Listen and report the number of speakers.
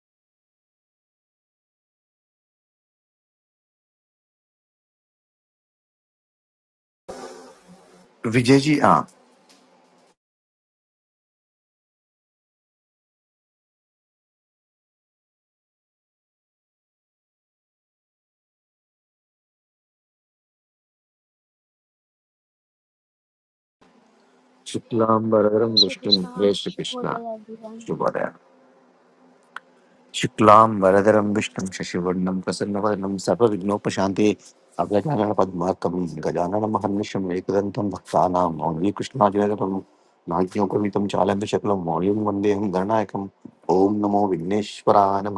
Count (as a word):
two